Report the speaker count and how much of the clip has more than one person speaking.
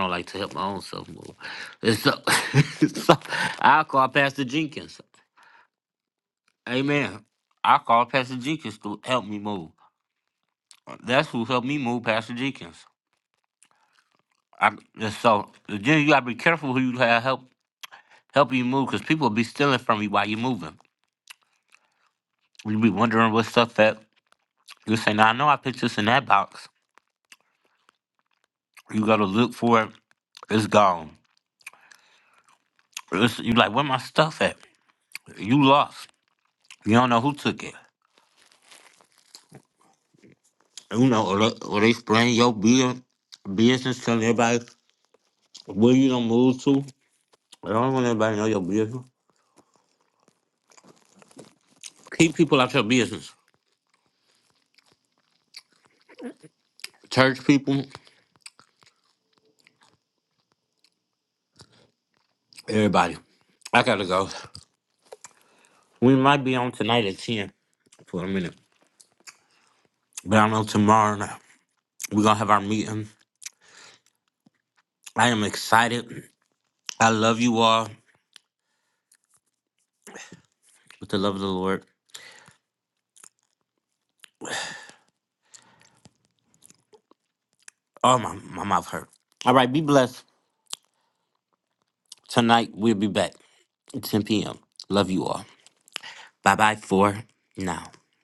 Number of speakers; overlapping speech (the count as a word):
one, no overlap